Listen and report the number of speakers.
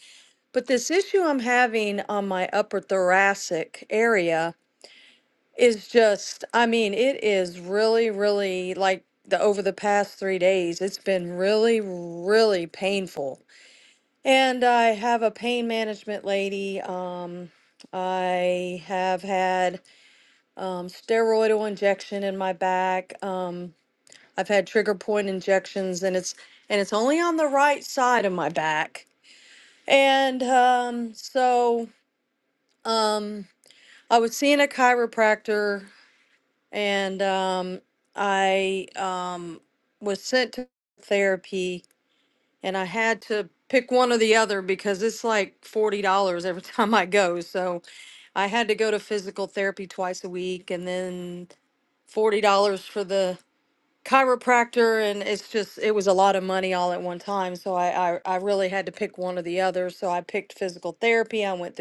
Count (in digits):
1